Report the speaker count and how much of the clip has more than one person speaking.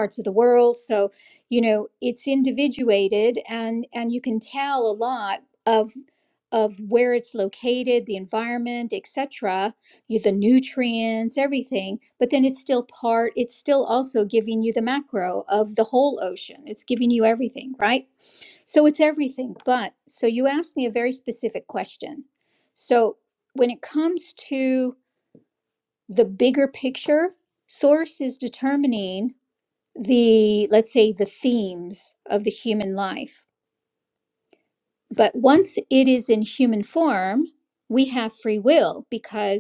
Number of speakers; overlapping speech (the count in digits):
1, no overlap